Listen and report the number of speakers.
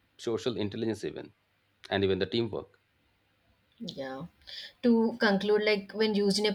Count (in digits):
2